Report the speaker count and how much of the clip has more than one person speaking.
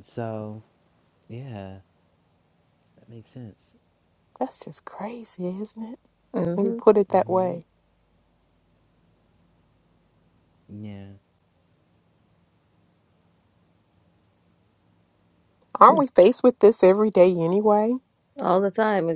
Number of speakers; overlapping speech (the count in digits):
3, about 4%